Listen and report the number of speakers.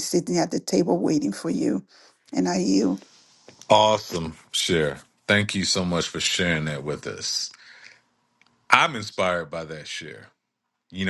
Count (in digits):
2